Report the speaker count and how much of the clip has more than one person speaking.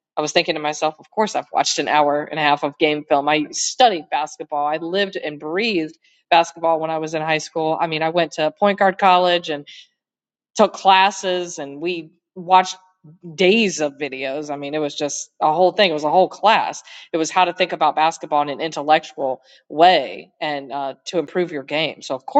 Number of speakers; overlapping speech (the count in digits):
1, no overlap